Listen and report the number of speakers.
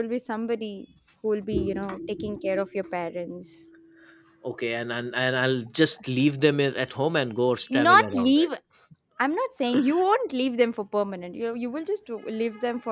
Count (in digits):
2